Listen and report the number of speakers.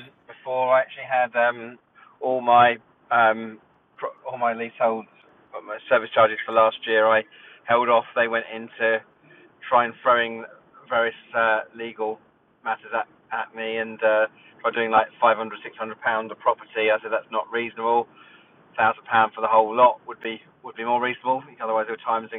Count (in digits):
1